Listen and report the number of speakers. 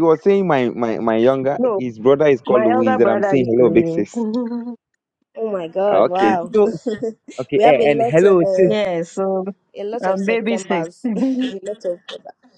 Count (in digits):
3